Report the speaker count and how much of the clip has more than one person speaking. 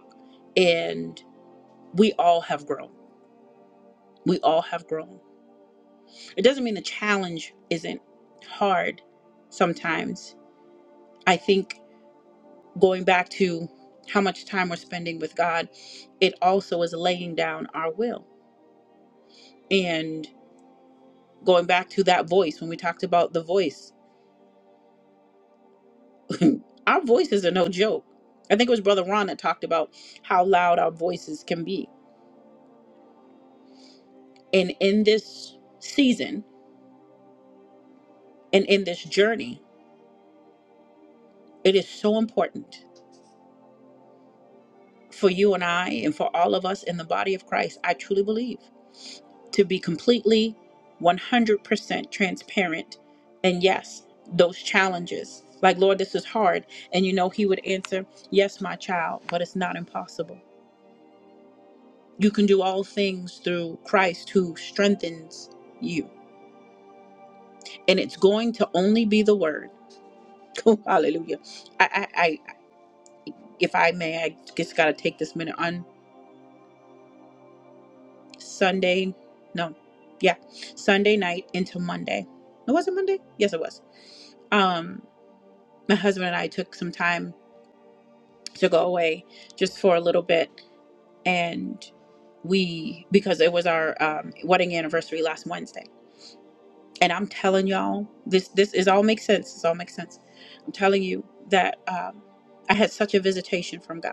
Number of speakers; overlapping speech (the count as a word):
one, no overlap